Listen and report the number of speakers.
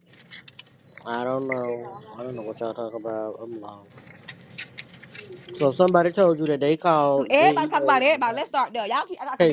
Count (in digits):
2